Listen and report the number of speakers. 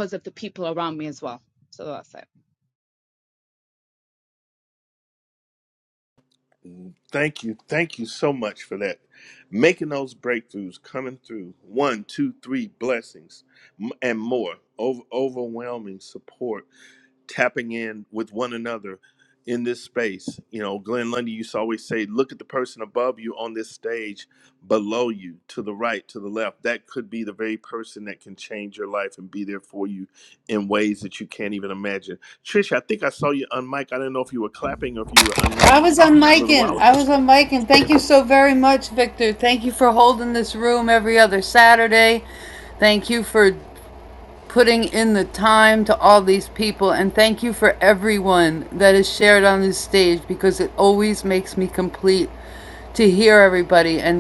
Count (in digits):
3